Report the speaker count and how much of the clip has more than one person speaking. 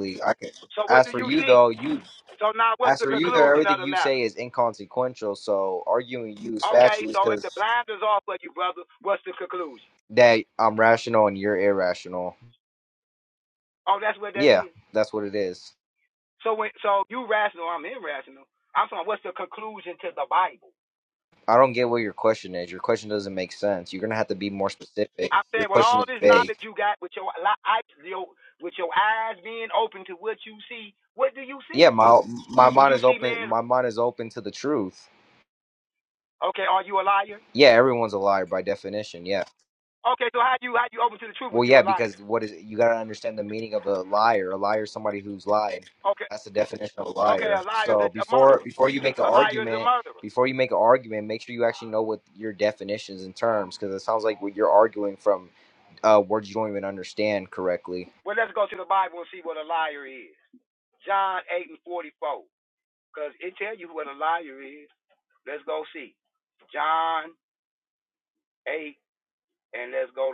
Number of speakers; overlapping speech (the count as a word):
two, about 12%